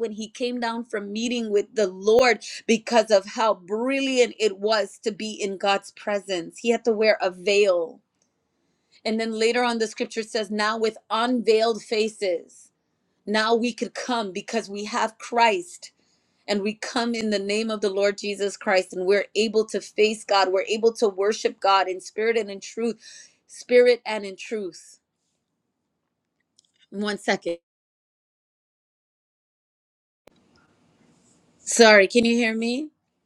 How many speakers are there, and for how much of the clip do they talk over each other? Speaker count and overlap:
one, no overlap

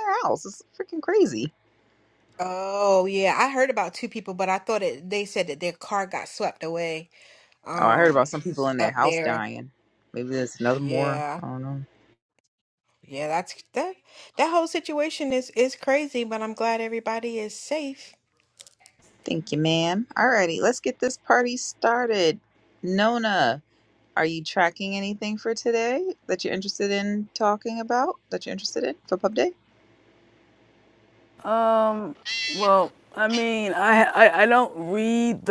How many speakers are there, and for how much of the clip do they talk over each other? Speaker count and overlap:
three, about 5%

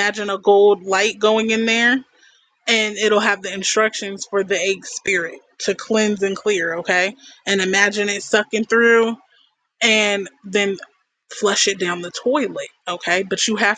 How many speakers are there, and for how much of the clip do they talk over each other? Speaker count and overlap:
one, no overlap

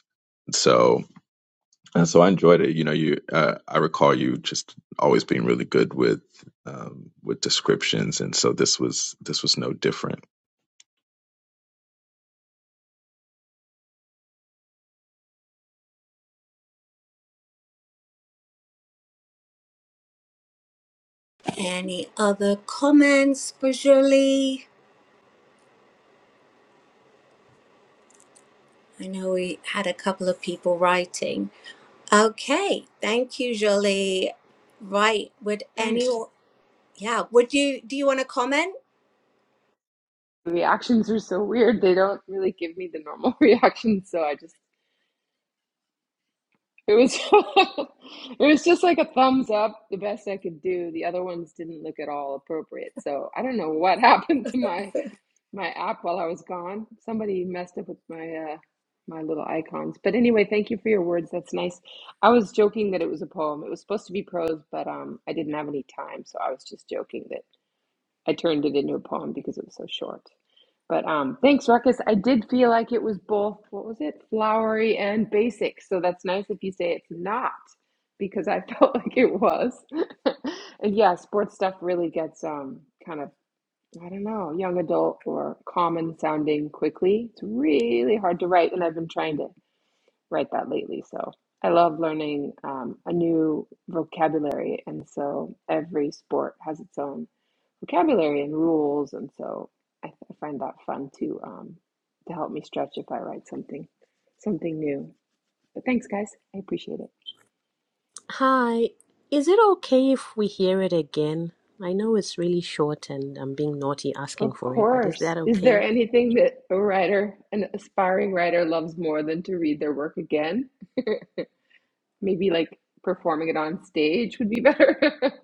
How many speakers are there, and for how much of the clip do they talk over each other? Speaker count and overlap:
four, about 1%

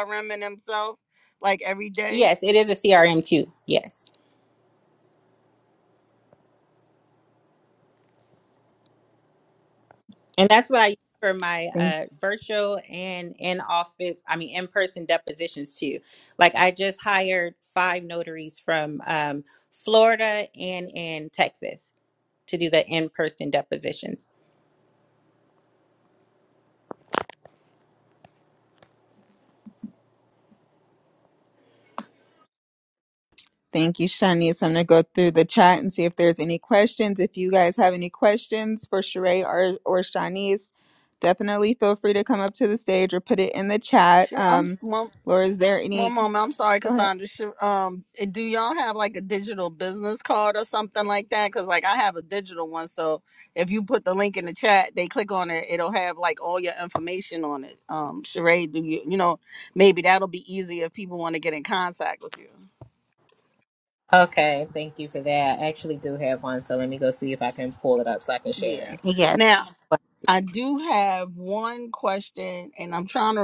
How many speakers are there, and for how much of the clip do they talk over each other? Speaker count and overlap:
four, about 2%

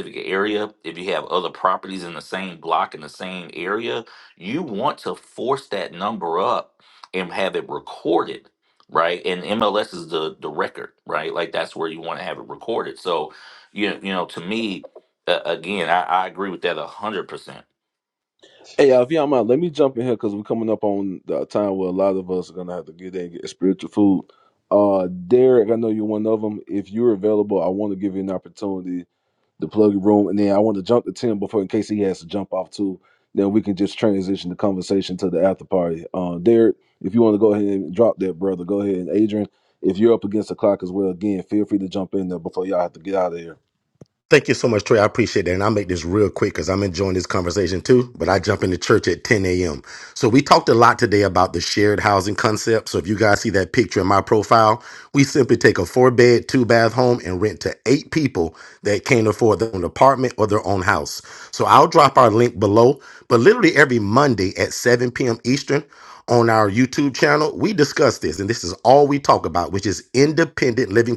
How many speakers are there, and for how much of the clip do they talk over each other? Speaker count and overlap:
three, no overlap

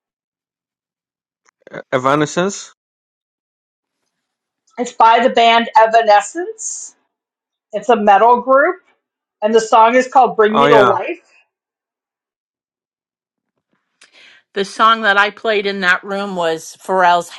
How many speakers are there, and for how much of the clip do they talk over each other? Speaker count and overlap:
three, about 2%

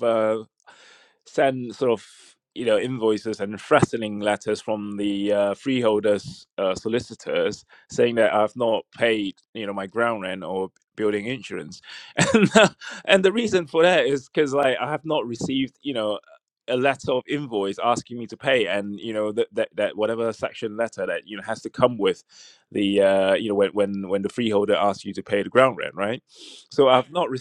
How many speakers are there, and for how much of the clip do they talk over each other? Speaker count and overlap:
one, no overlap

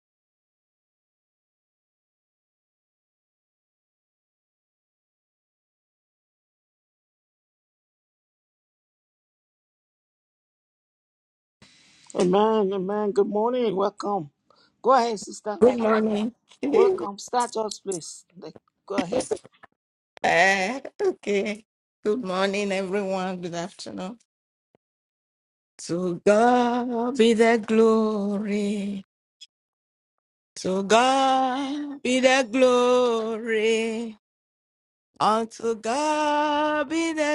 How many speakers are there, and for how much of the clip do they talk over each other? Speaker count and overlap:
two, under 1%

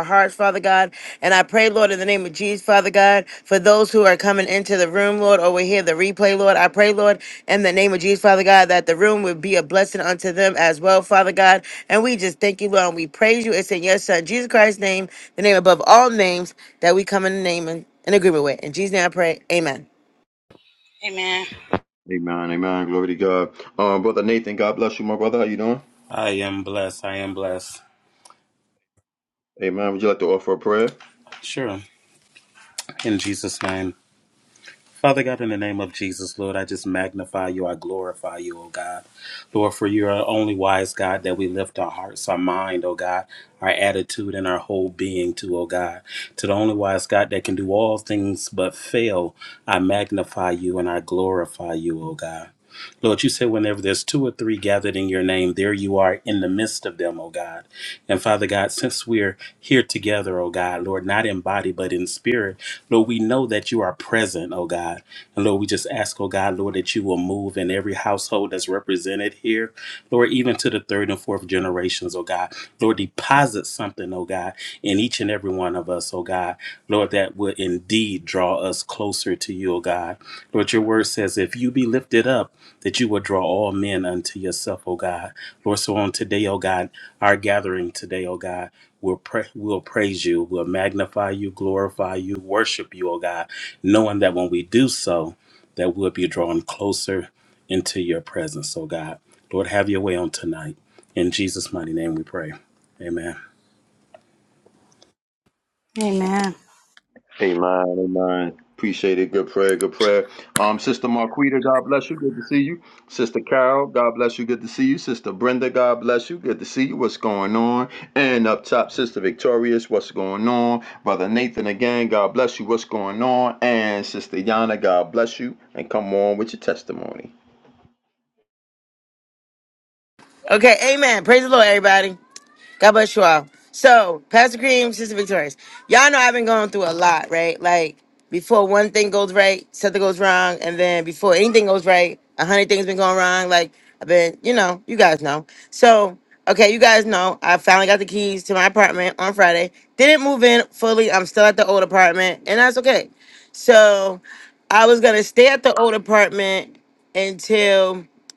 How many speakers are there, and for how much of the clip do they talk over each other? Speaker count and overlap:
four, no overlap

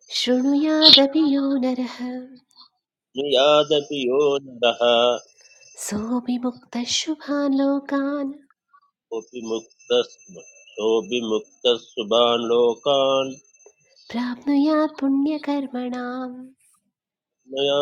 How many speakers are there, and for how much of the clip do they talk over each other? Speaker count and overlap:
two, no overlap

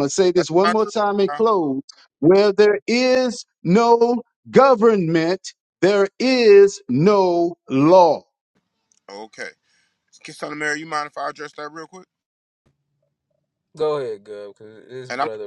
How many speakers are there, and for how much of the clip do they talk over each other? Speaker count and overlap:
three, about 7%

